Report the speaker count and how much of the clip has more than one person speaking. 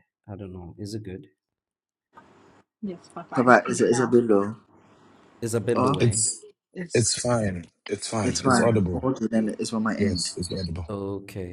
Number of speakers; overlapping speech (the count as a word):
four, about 22%